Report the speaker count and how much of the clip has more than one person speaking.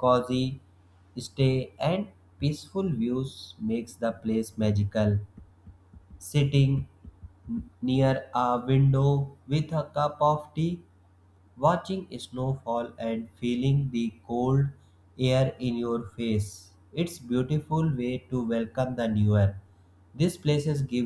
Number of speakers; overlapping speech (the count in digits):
1, no overlap